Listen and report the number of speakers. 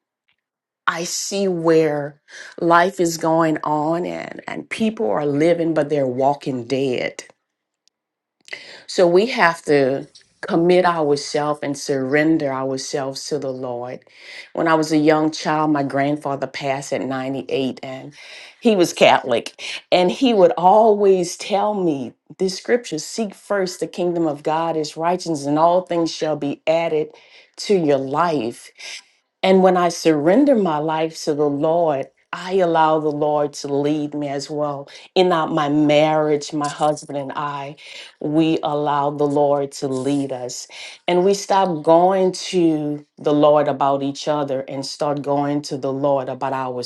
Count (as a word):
one